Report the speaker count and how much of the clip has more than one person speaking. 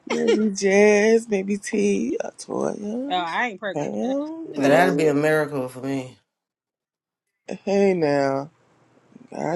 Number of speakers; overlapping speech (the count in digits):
3, about 13%